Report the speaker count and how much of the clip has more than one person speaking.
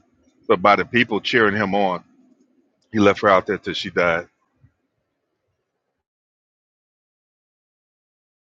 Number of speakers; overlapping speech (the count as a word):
one, no overlap